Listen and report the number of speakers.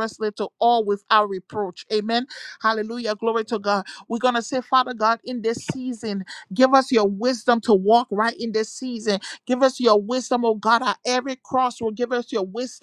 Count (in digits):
1